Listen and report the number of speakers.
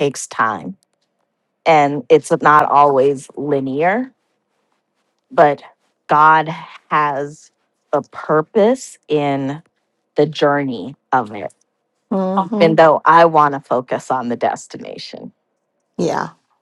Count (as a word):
two